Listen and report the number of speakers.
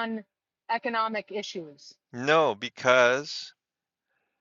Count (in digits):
2